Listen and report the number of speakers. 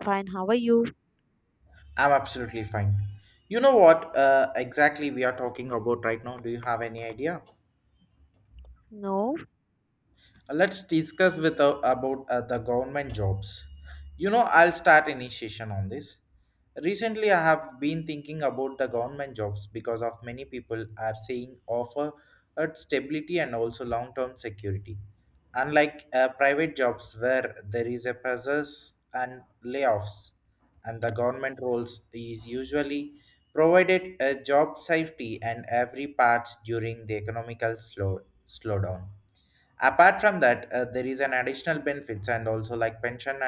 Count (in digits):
2